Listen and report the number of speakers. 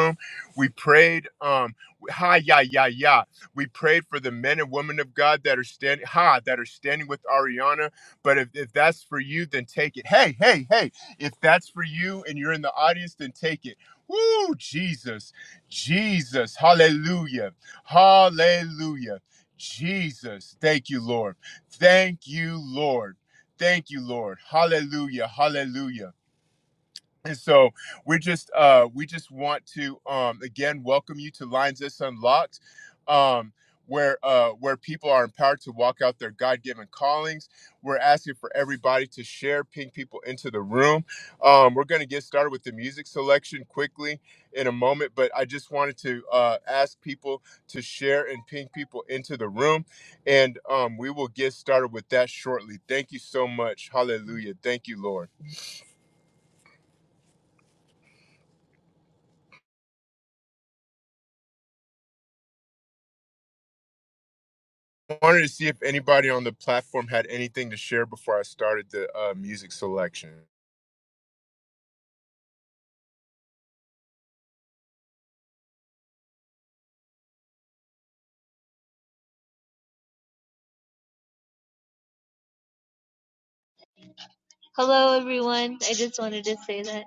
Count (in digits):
2